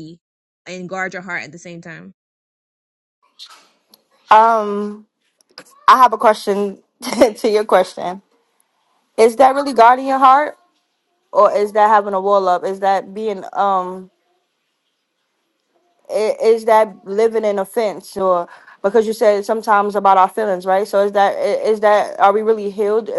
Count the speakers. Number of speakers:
2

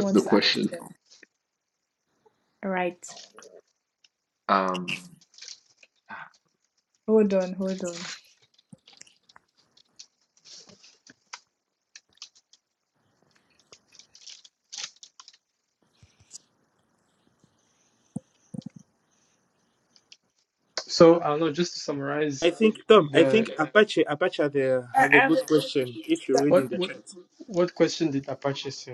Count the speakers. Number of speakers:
4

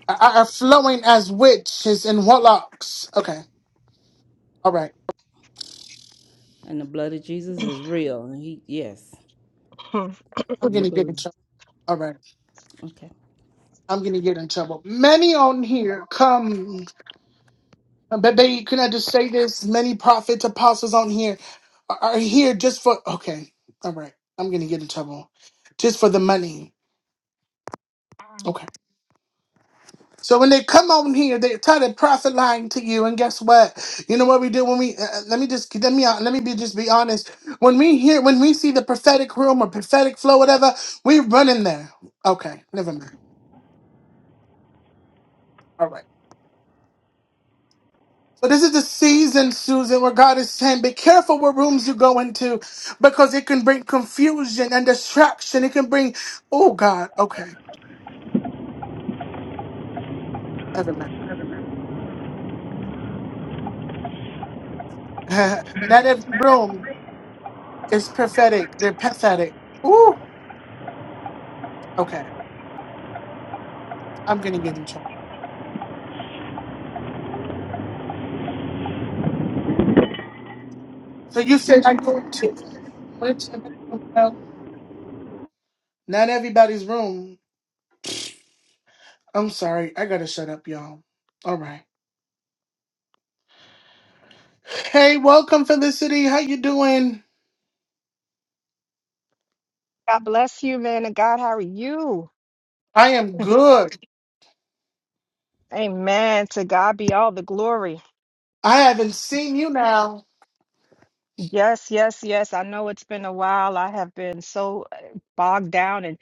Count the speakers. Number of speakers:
3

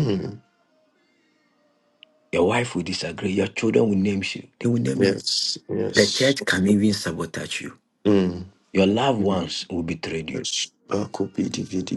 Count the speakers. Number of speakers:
2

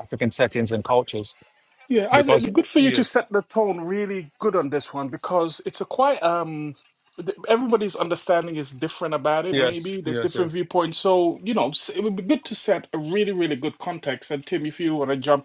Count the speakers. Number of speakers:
2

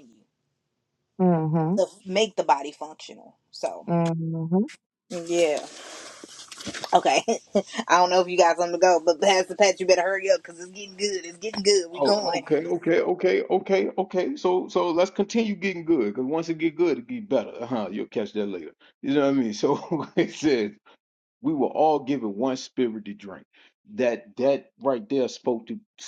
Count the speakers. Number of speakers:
3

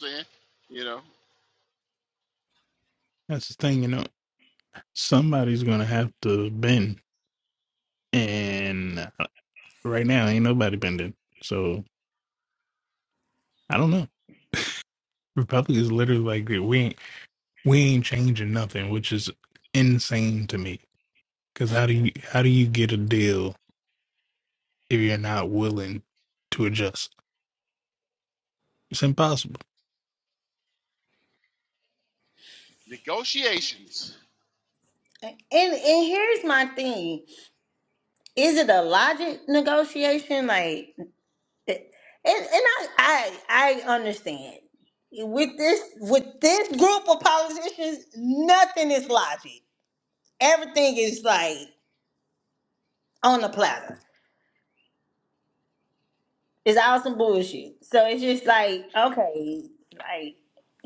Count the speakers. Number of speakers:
3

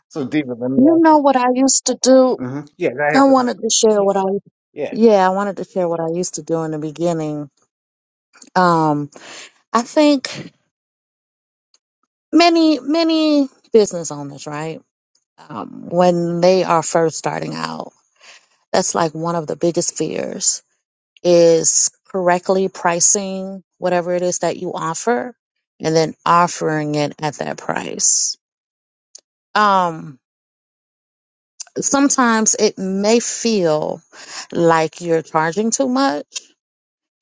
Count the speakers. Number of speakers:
2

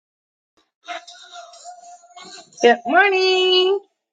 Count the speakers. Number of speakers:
1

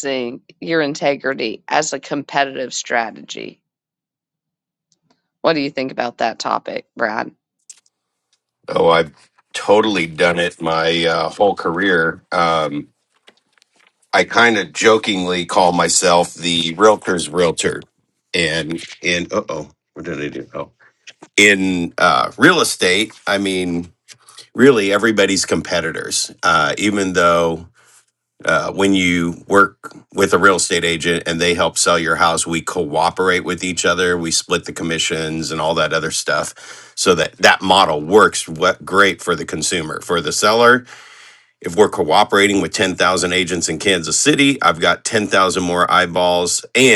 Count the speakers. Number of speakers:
2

